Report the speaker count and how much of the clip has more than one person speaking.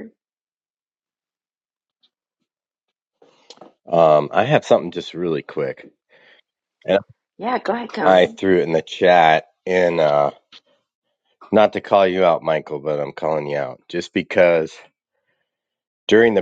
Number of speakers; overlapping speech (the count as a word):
two, about 2%